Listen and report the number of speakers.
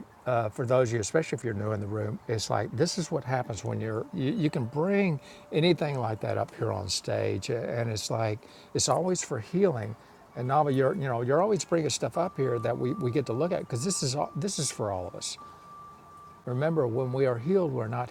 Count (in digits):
1